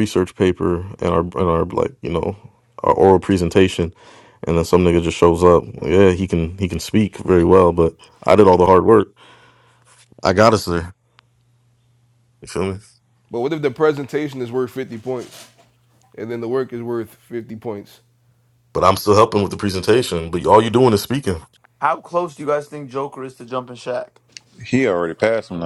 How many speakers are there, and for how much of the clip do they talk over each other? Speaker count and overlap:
4, under 1%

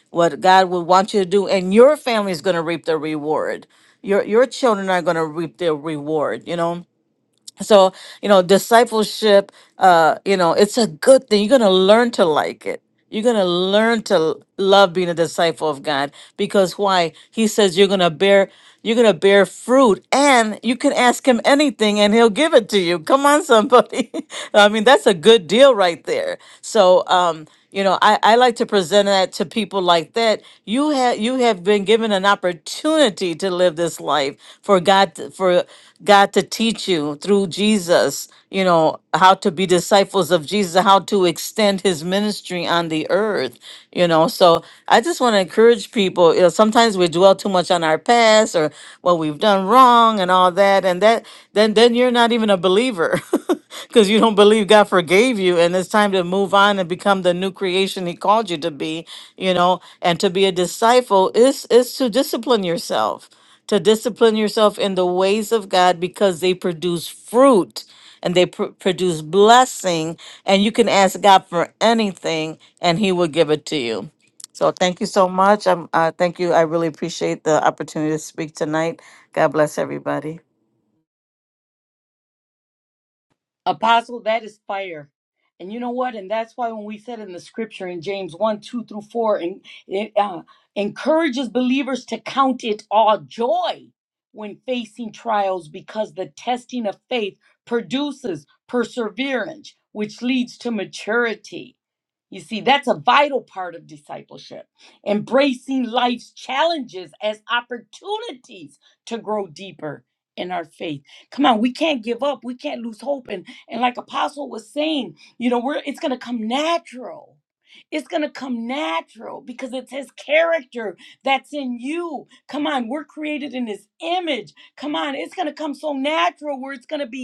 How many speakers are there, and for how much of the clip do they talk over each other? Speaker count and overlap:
2, no overlap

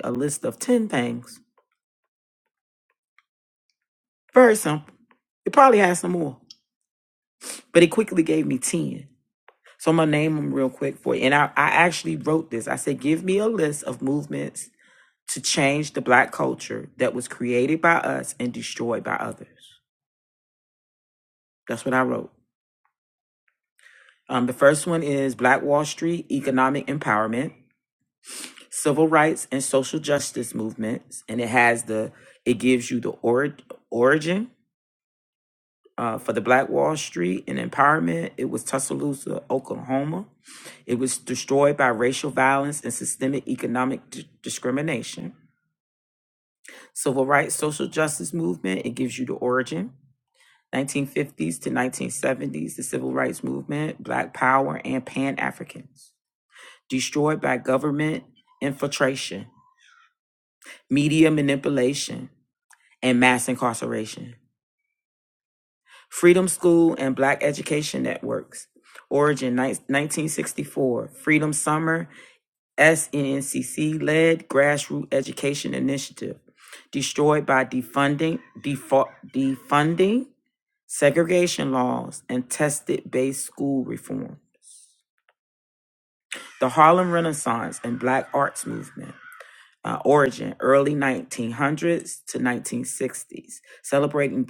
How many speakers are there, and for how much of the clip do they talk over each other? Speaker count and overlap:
1, no overlap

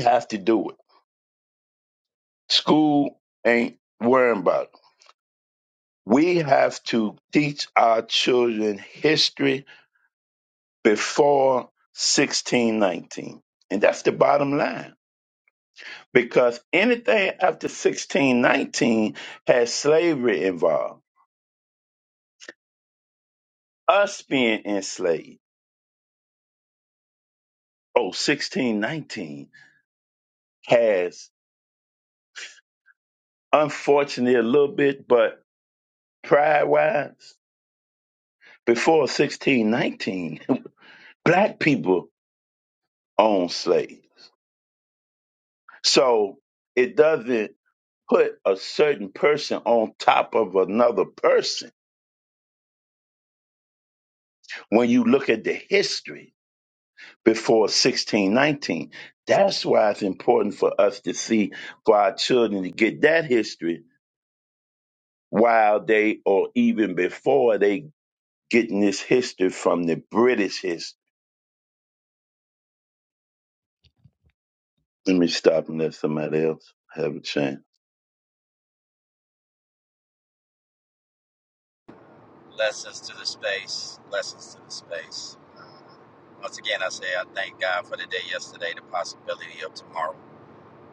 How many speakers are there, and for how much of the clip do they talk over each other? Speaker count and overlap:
2, no overlap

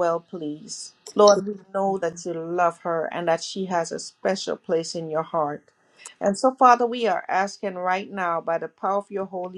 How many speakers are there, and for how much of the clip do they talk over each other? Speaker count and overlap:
1, no overlap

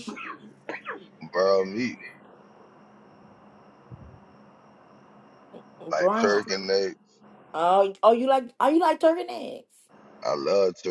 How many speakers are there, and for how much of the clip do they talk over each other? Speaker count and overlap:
2, about 4%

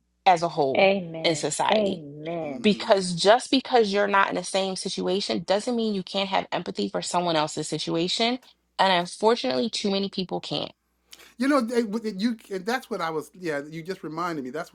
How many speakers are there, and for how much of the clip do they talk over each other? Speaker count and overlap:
3, about 9%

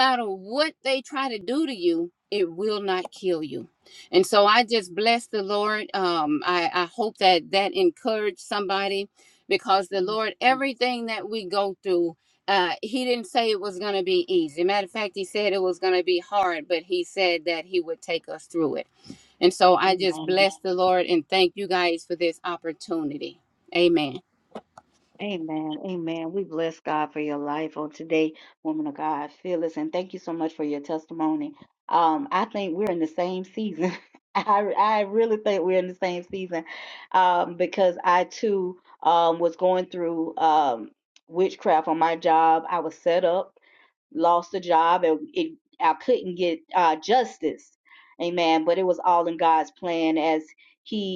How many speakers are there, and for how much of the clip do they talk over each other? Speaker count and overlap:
2, about 1%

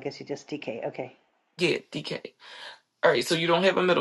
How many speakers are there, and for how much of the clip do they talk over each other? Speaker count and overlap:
2, no overlap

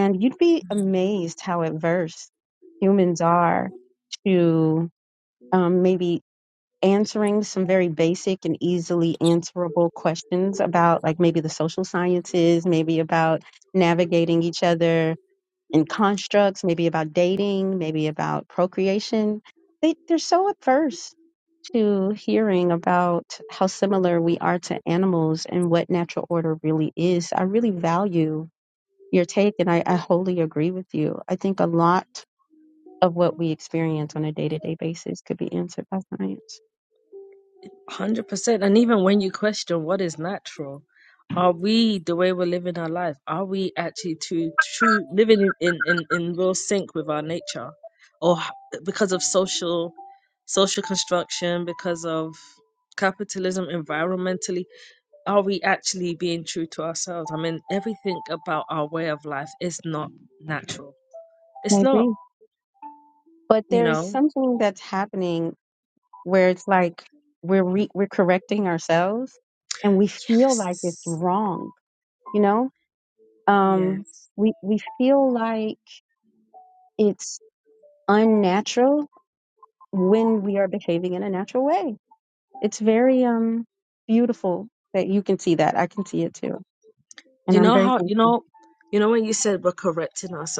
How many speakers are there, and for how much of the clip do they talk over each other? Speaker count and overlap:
2, about 3%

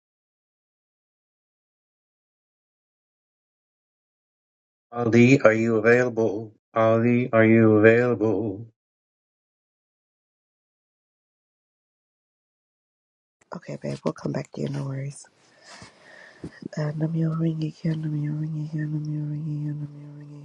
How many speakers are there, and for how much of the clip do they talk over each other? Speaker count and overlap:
2, no overlap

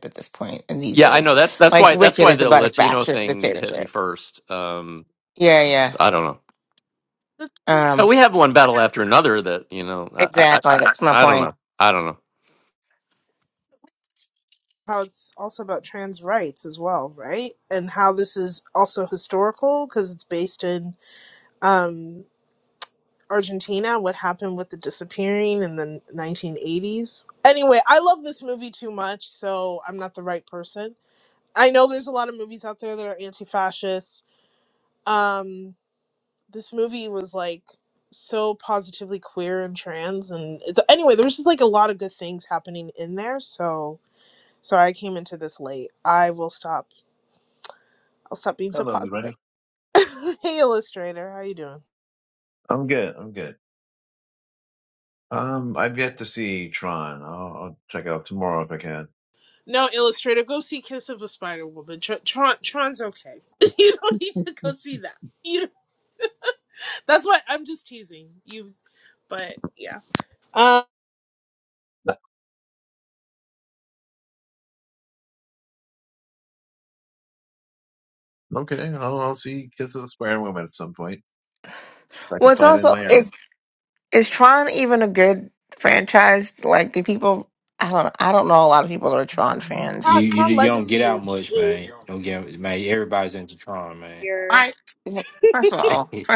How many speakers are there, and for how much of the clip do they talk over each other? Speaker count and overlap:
5, about 7%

